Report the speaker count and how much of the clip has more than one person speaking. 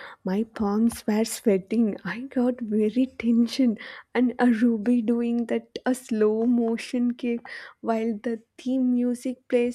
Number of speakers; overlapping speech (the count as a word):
one, no overlap